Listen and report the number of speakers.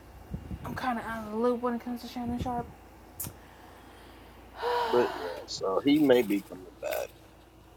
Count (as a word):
two